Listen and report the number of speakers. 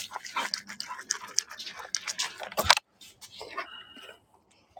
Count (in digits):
0